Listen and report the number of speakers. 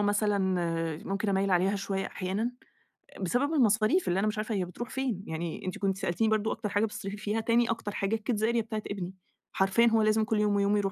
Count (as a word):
one